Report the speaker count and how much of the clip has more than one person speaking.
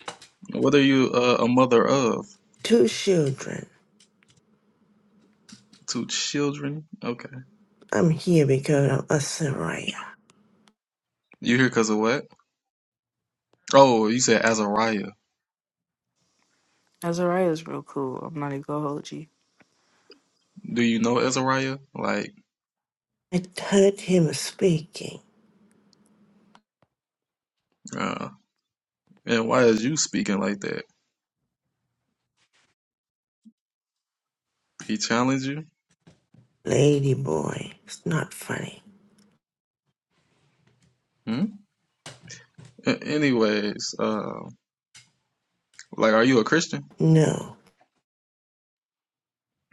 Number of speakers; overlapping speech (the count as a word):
three, no overlap